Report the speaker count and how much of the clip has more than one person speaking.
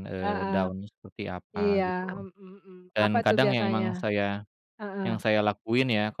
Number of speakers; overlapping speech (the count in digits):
2, about 34%